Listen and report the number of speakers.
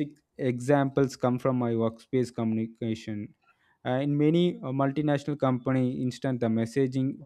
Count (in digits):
1